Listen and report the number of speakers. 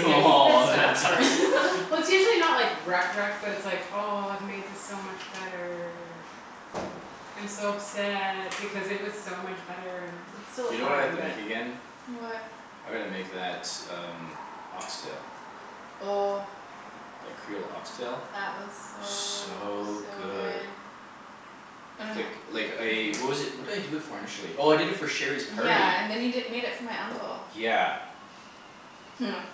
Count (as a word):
three